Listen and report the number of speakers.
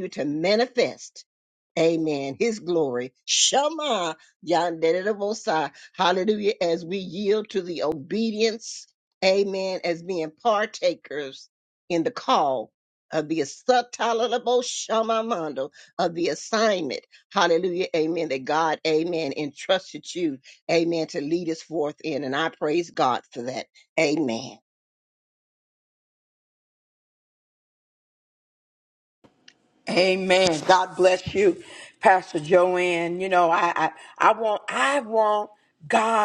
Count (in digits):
2